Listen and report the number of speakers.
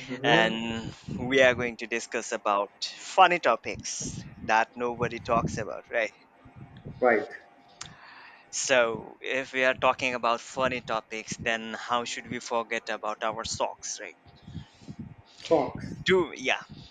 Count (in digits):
2